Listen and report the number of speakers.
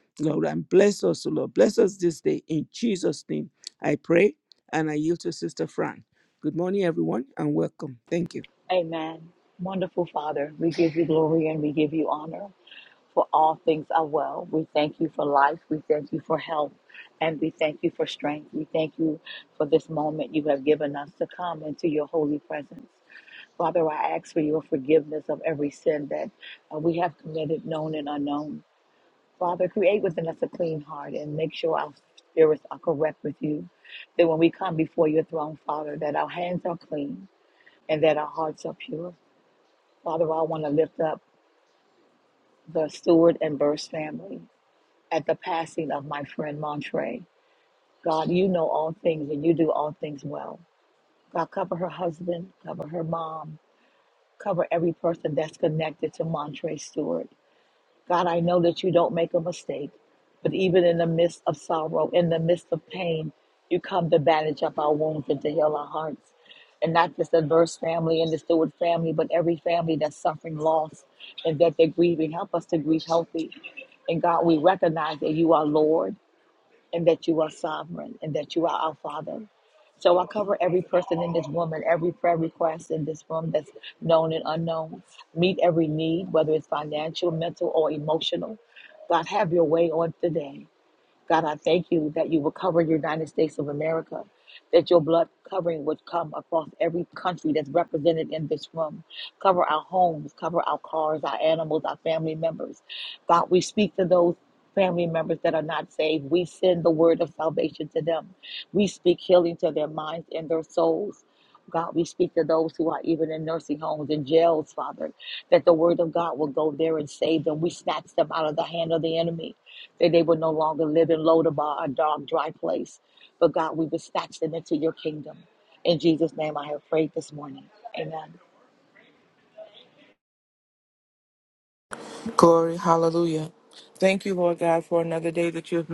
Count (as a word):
three